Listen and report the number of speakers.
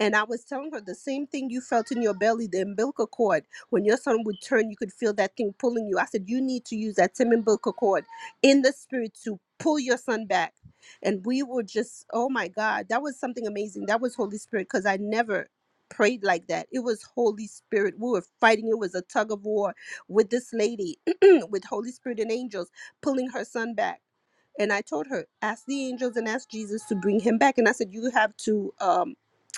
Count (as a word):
one